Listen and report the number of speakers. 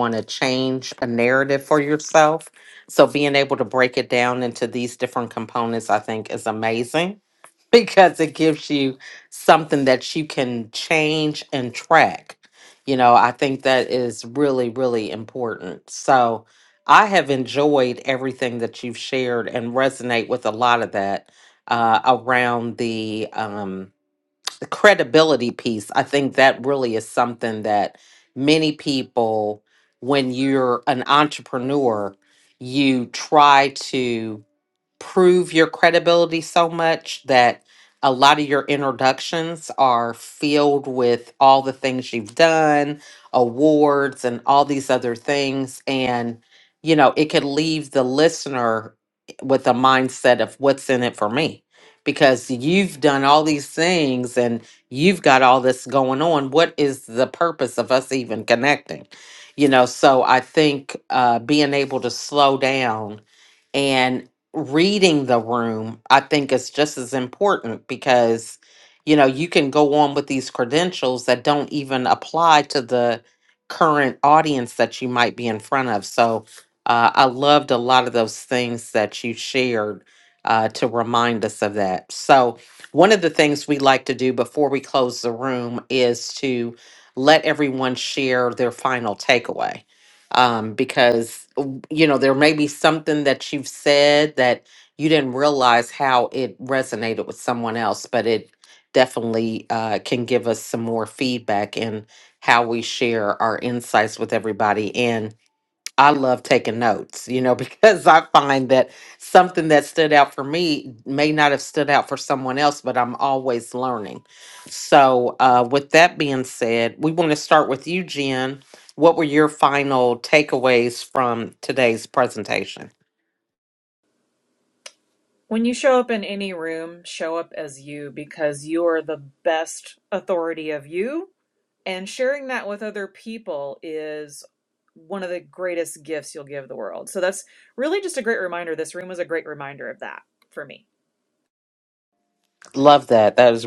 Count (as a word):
two